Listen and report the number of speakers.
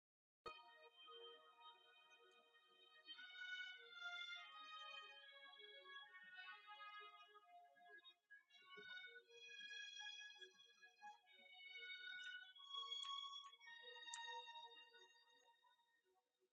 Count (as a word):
zero